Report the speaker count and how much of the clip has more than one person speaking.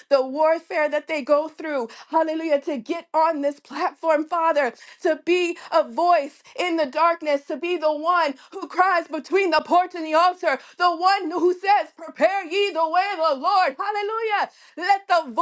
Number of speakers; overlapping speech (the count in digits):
1, no overlap